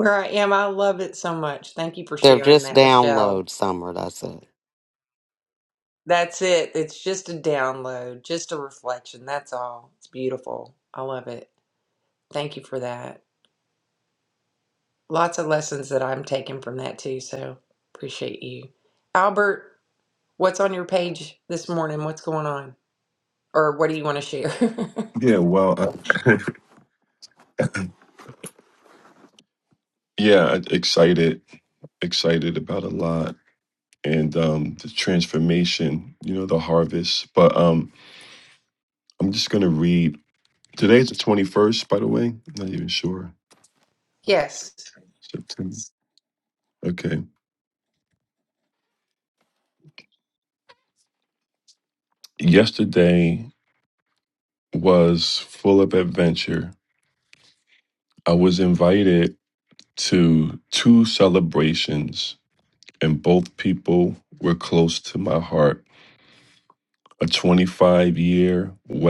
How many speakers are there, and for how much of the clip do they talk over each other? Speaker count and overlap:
3, about 2%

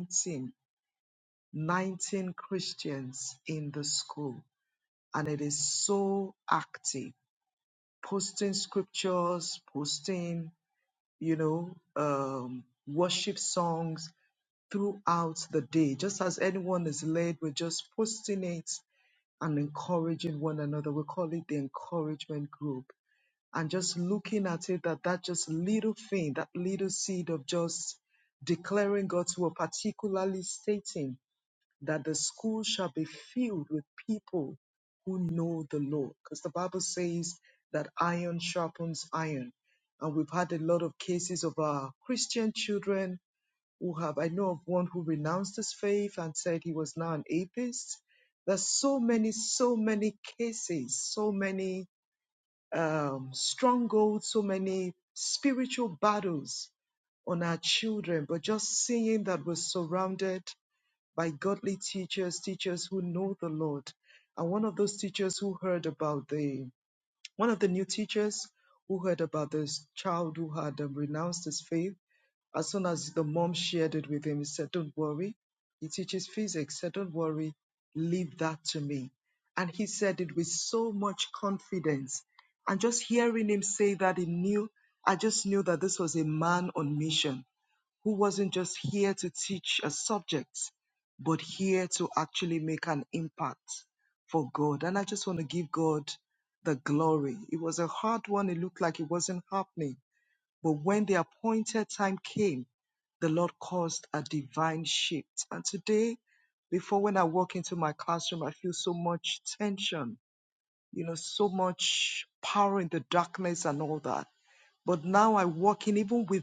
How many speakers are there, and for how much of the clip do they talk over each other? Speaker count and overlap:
1, no overlap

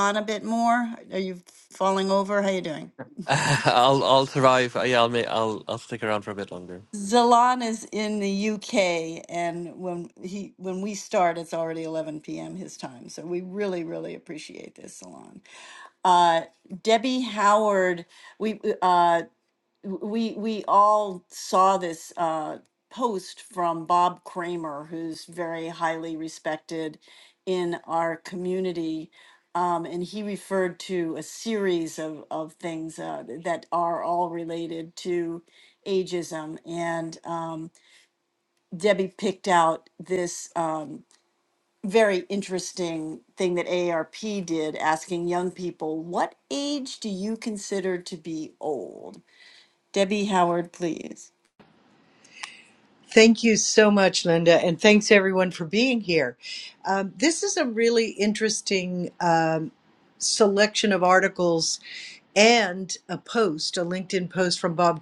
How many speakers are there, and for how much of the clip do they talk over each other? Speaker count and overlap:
3, no overlap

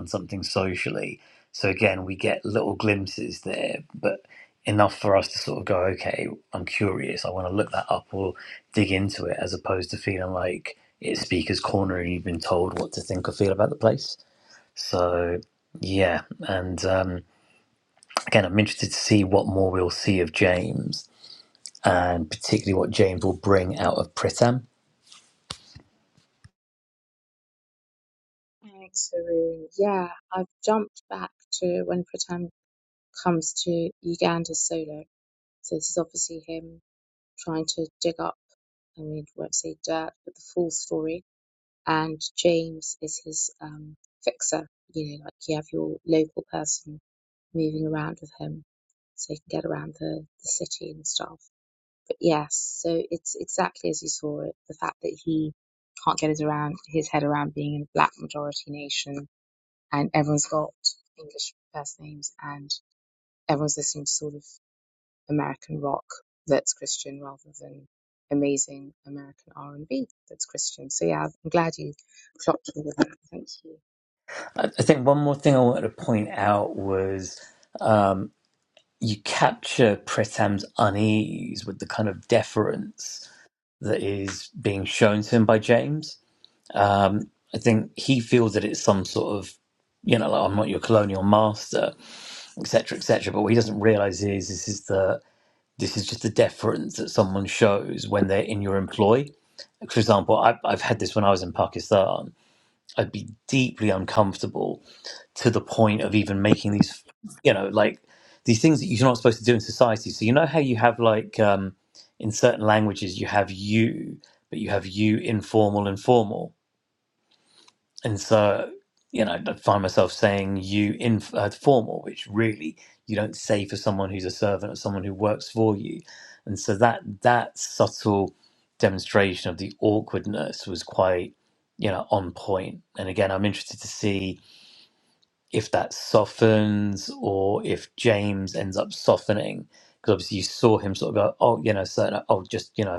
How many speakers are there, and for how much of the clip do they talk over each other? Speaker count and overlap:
2, no overlap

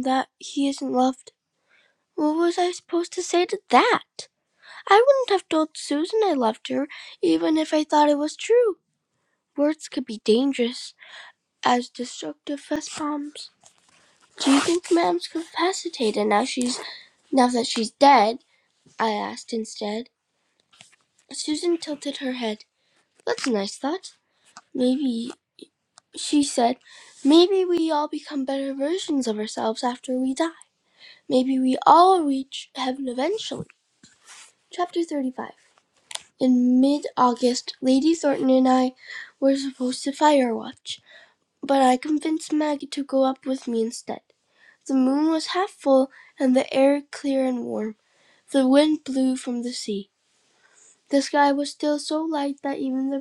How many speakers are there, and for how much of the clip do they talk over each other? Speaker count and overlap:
1, no overlap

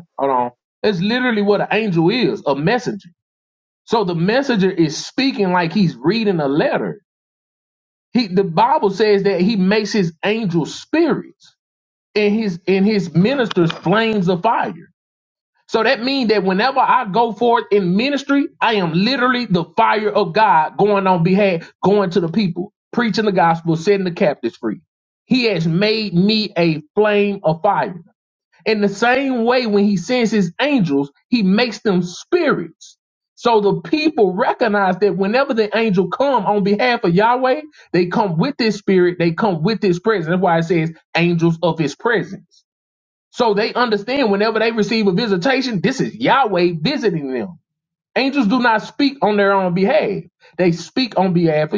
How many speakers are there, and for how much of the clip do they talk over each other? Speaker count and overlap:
1, no overlap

